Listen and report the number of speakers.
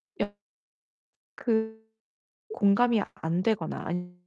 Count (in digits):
1